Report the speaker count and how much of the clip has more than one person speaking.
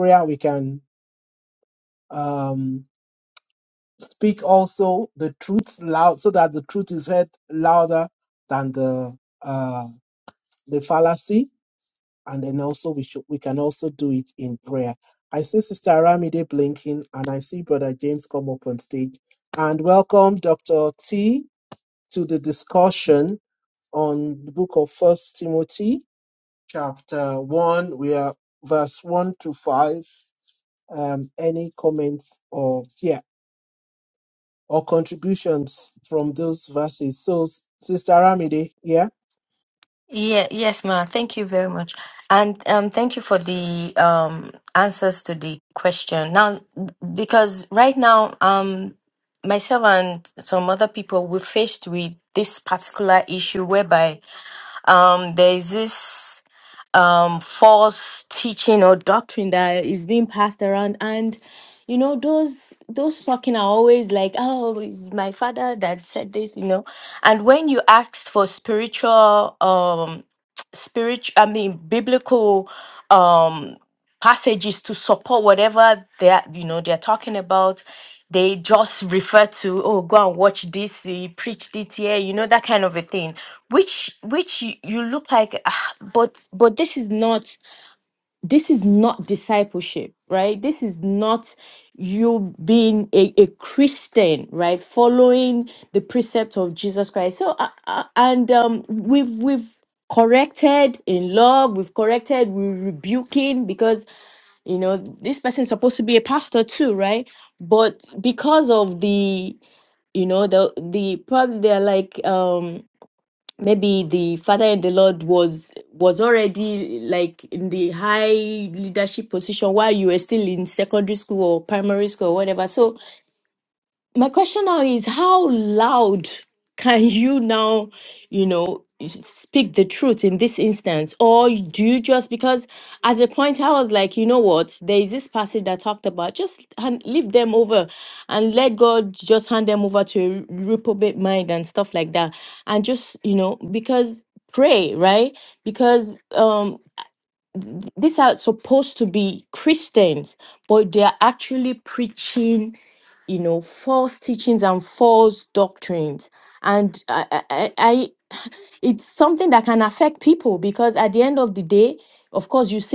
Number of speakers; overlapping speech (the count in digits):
2, no overlap